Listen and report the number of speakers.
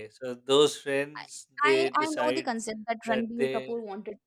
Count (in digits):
2